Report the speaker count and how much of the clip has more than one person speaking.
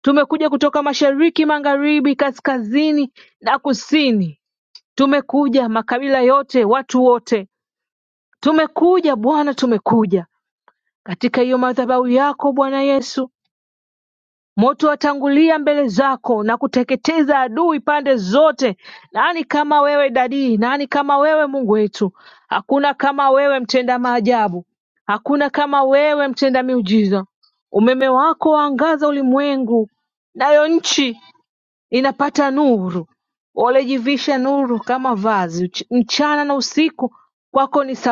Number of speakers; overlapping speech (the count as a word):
one, no overlap